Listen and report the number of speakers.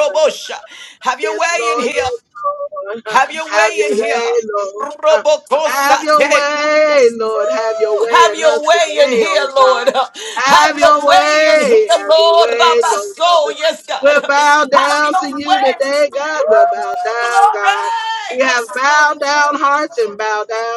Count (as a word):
two